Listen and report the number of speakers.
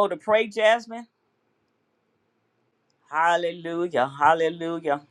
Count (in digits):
1